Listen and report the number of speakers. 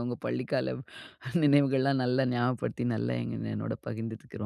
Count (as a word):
one